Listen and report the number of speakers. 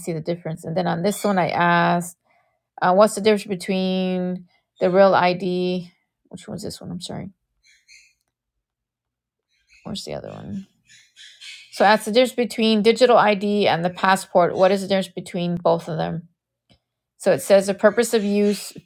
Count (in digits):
1